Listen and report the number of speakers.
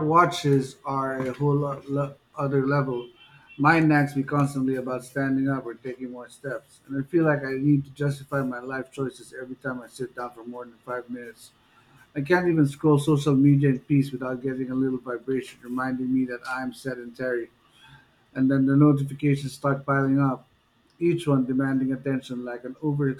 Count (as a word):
one